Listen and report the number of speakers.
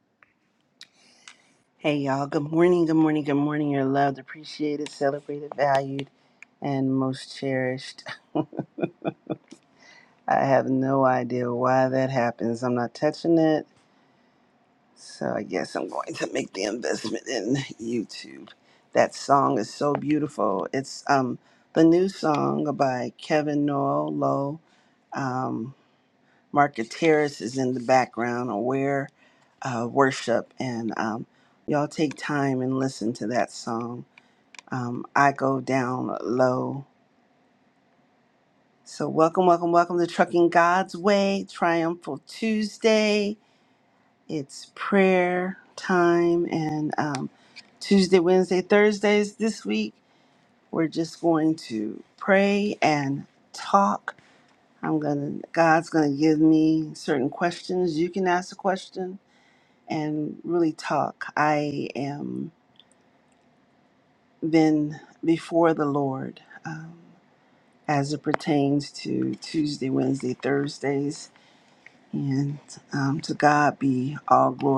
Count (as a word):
one